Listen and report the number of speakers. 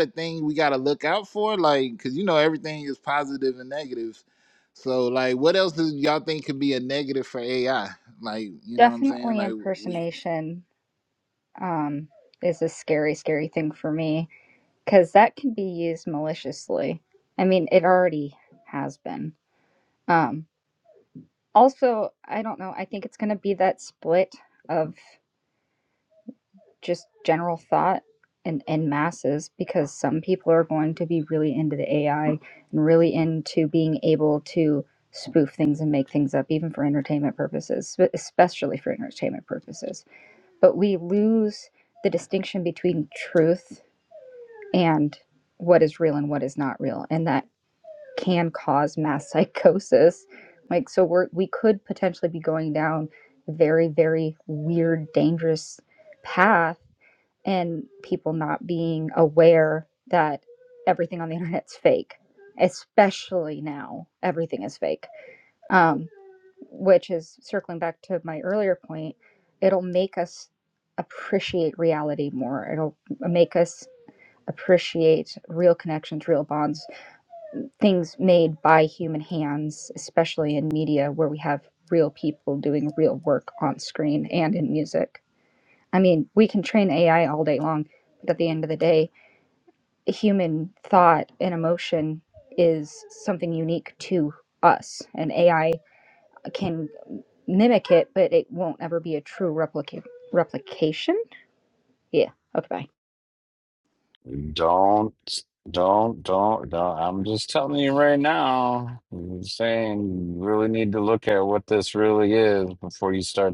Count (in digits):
3